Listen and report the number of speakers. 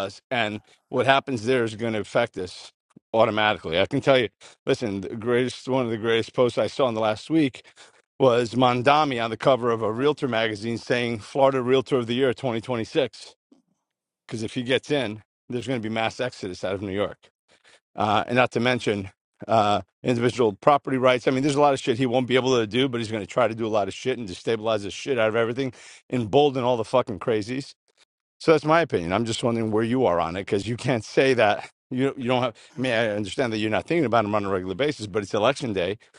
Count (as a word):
one